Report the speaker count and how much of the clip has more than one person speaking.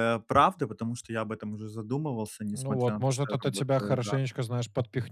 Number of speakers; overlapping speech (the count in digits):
2, about 32%